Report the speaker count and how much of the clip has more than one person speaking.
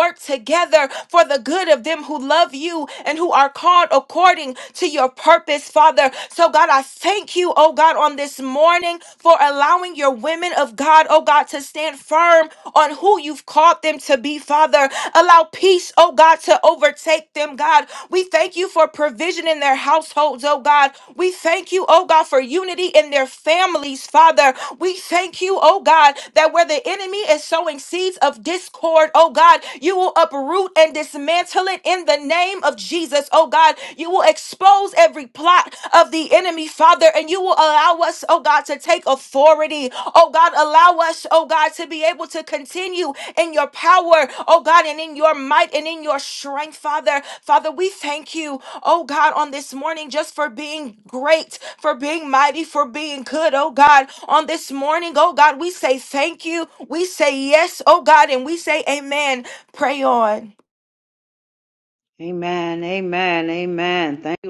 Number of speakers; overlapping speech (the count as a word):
two, no overlap